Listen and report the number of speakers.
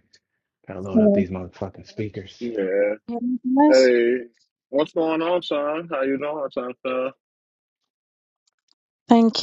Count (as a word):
three